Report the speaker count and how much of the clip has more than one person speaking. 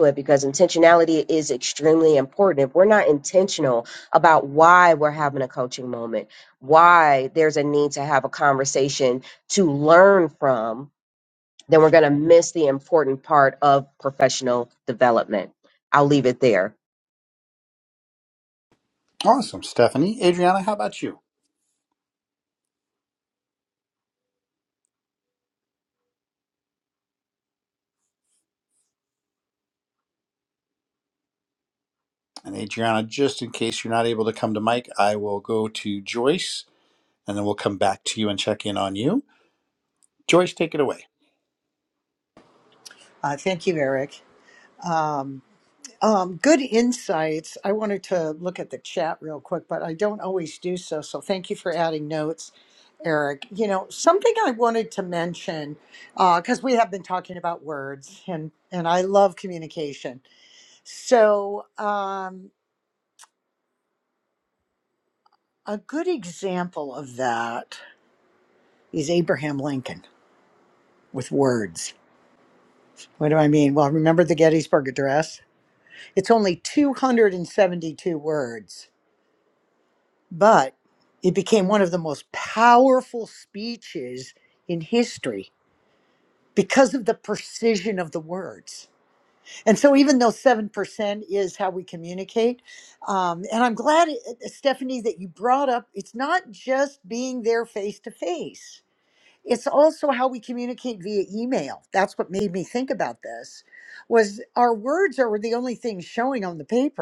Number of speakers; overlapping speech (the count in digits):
3, no overlap